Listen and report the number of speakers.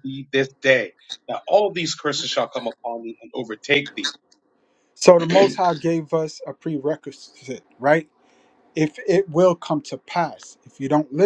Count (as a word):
two